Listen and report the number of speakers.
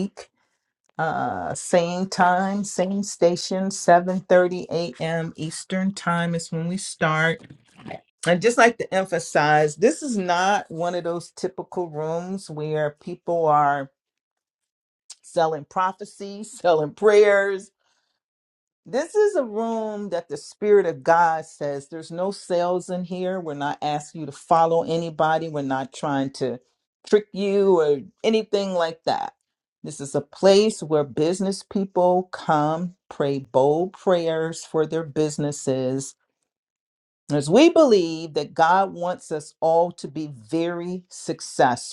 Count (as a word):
one